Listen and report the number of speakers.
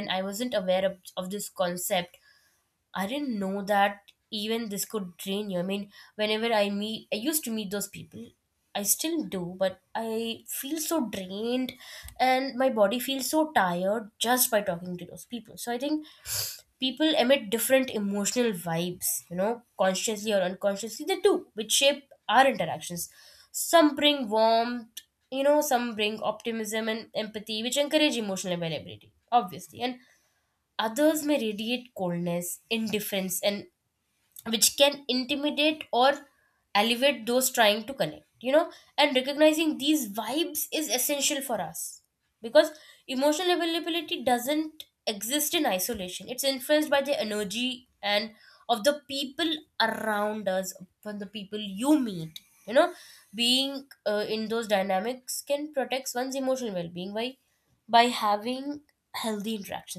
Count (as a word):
one